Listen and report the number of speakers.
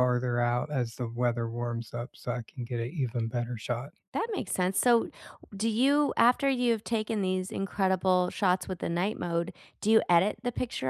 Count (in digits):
2